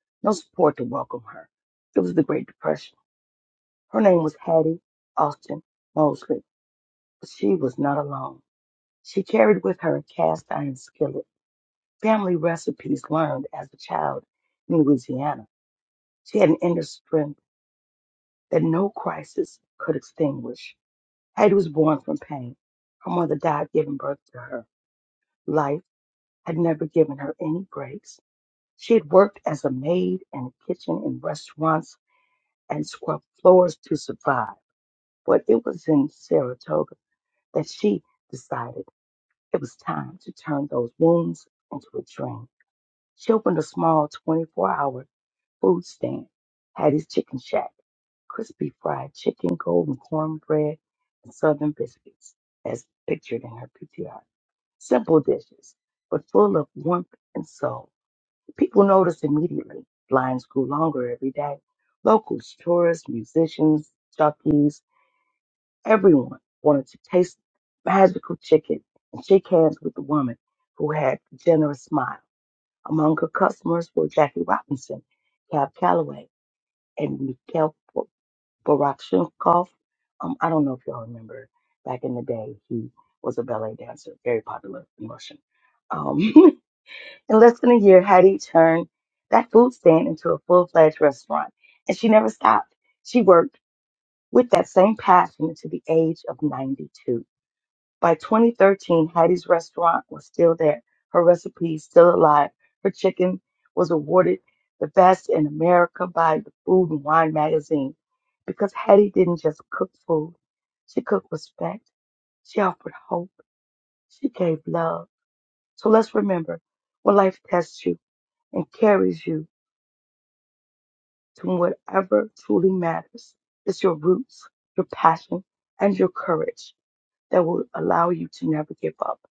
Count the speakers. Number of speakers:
one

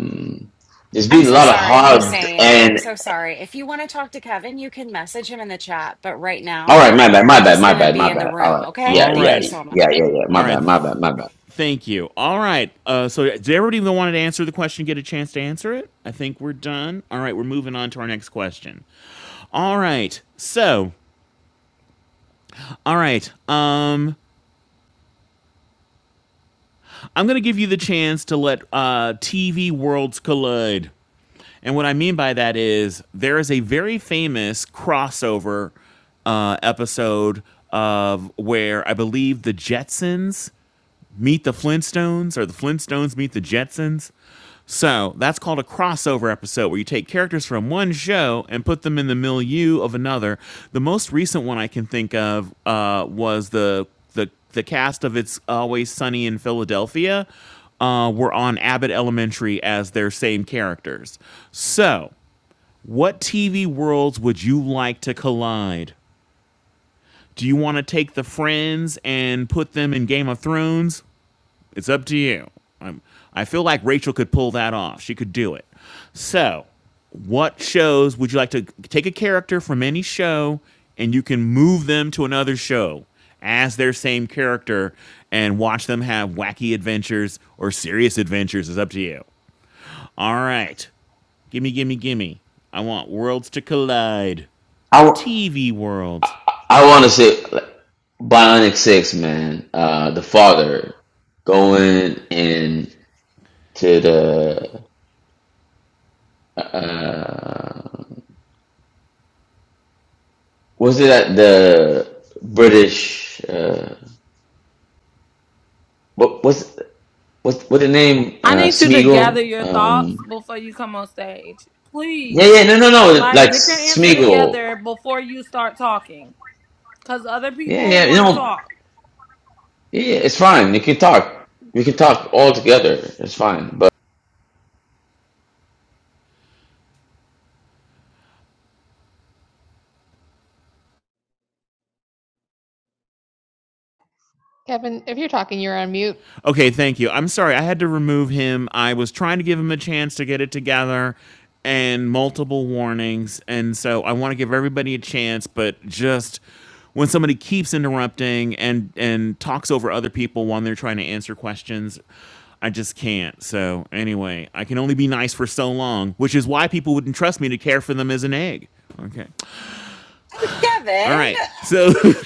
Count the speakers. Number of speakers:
five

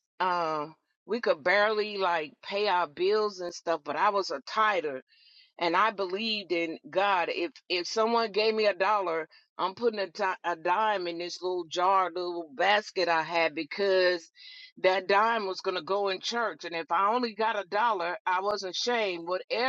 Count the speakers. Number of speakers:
one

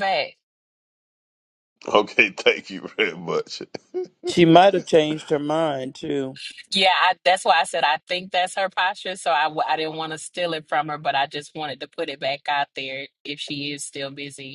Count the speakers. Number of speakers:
three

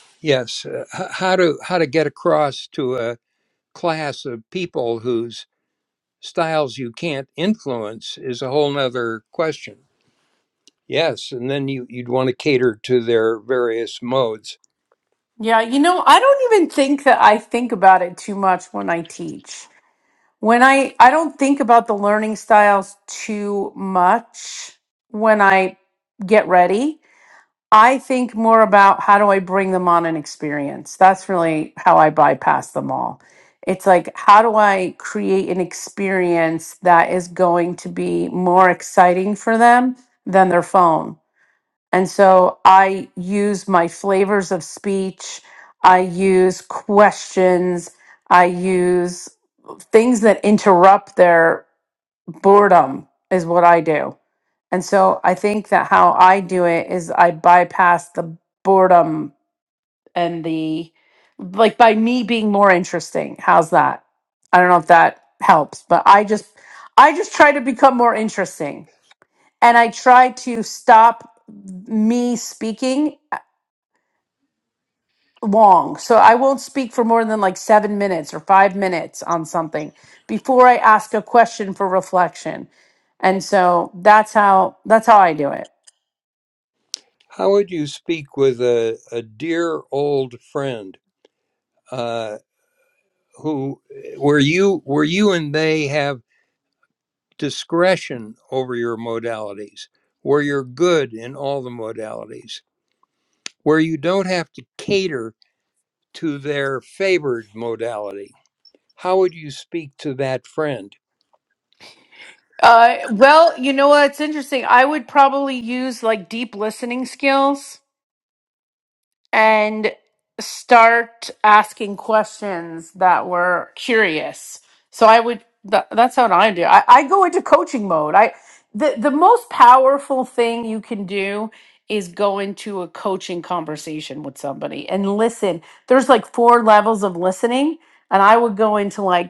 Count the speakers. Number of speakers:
two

